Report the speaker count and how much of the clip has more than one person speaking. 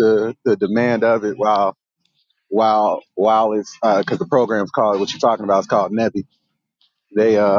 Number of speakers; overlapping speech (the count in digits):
1, no overlap